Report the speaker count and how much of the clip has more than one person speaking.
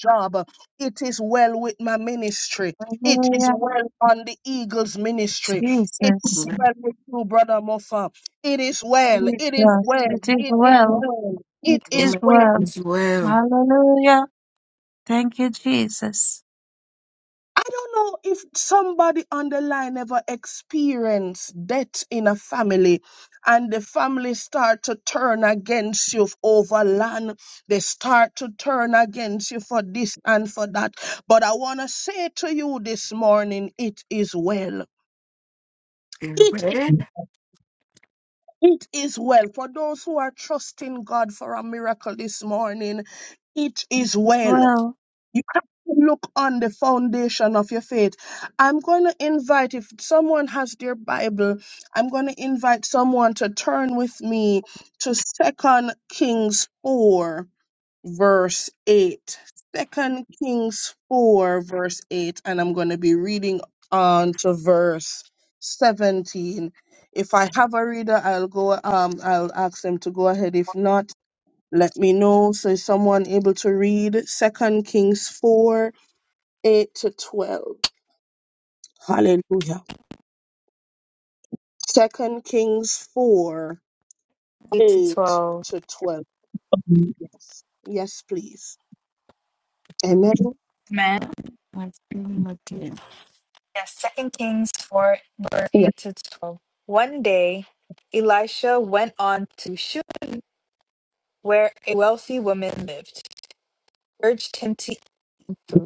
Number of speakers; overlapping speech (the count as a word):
four, about 5%